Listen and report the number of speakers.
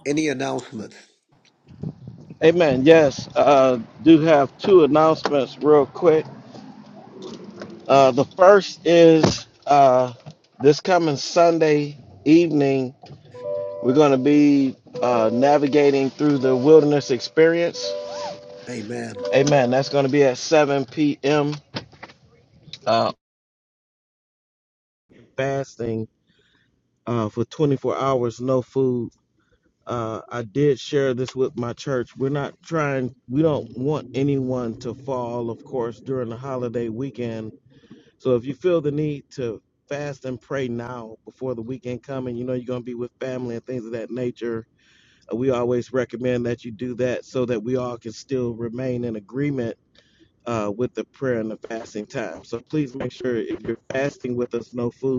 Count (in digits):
2